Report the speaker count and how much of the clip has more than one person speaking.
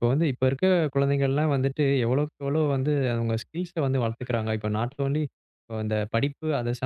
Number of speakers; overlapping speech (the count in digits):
1, no overlap